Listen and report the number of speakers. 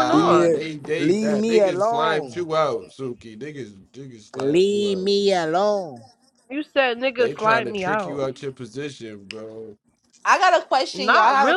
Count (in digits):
4